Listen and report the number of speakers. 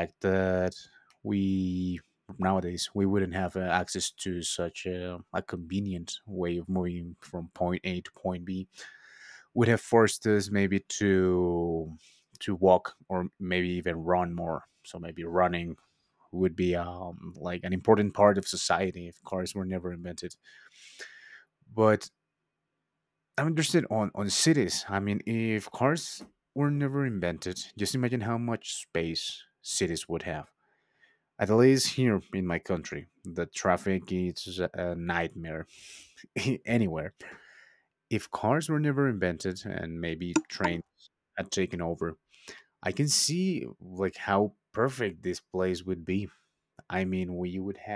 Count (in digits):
1